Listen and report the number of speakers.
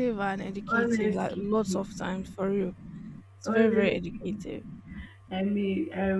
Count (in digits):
2